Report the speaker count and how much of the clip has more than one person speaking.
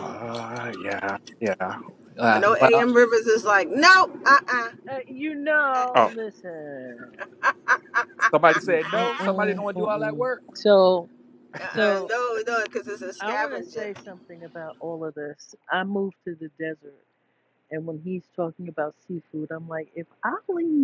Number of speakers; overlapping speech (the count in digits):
3, about 18%